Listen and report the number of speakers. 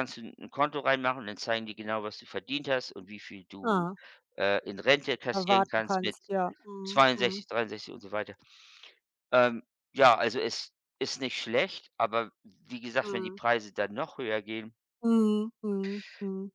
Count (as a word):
two